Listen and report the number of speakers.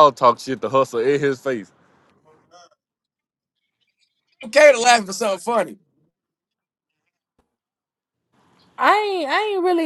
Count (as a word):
three